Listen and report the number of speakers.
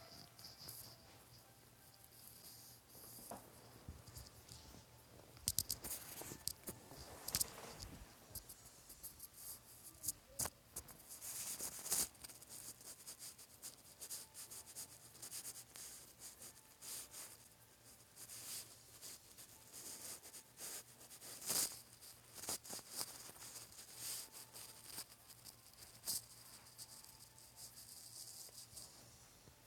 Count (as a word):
zero